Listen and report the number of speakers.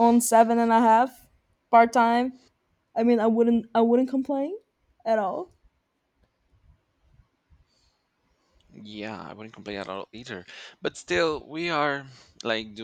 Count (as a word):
two